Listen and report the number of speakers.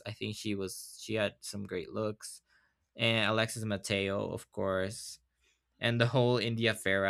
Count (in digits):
1